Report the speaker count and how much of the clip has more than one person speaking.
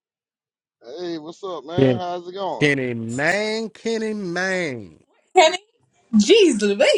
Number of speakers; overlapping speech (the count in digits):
3, about 5%